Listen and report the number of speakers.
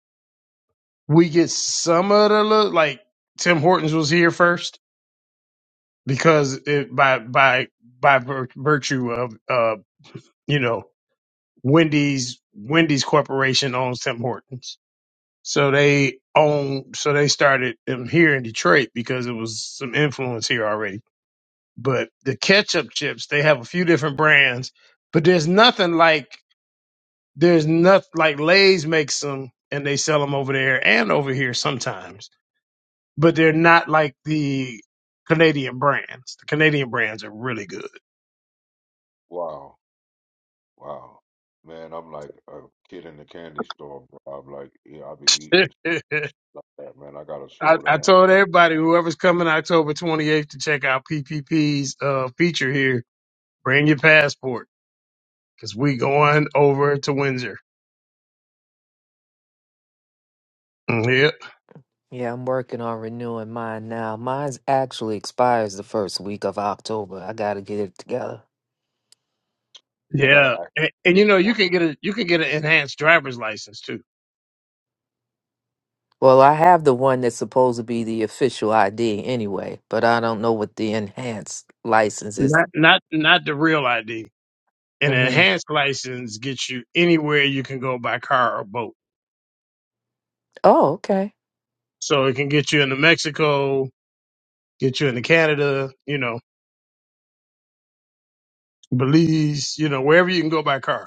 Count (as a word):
three